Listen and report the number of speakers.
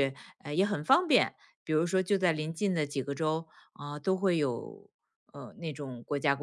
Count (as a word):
one